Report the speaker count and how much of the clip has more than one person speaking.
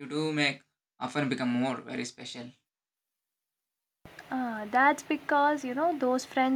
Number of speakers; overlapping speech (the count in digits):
2, no overlap